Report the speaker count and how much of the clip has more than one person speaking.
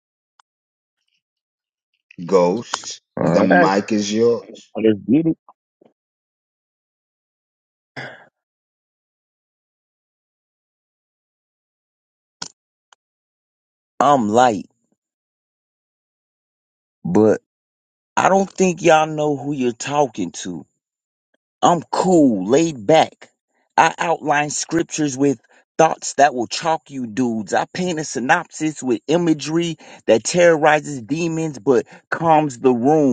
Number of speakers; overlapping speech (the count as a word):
two, about 2%